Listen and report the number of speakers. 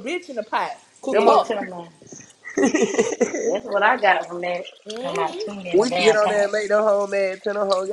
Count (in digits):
3